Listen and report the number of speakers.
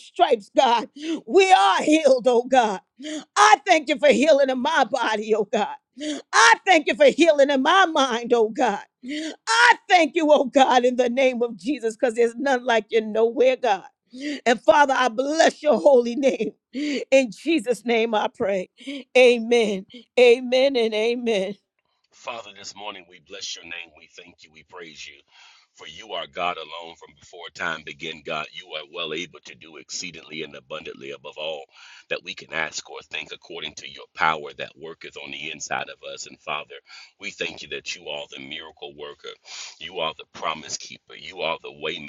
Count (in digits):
2